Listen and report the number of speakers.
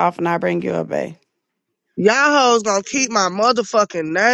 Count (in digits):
2